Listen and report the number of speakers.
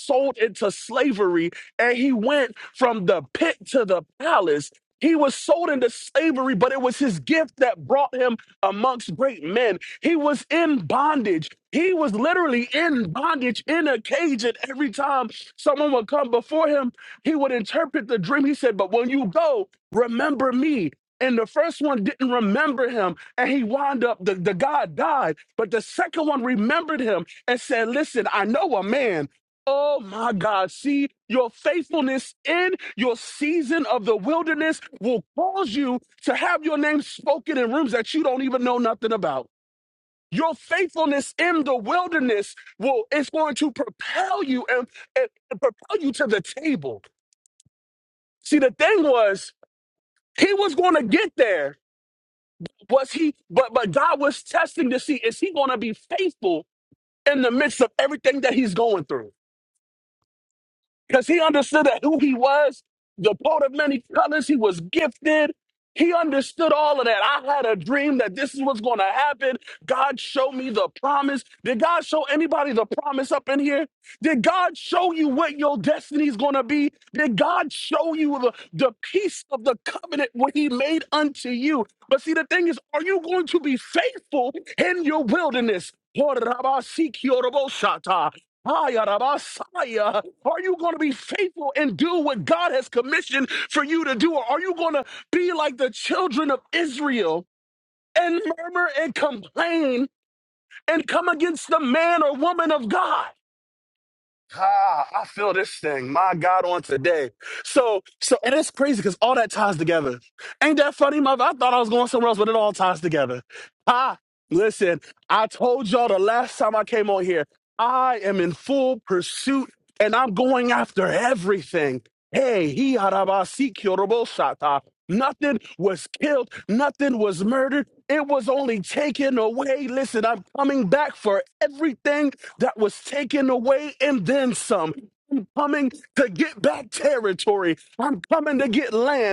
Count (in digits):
1